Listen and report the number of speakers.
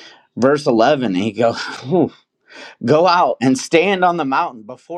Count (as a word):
one